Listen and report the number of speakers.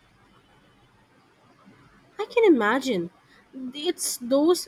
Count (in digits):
1